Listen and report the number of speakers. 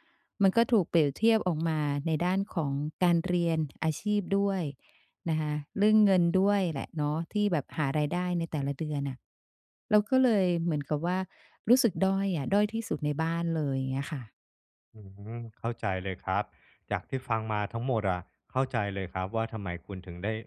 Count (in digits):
2